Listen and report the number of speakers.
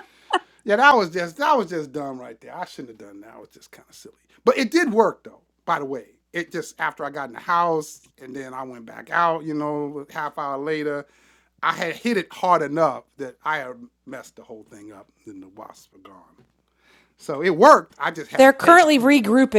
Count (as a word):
two